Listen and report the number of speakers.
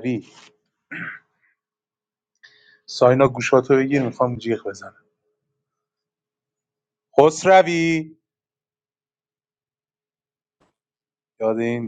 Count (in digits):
1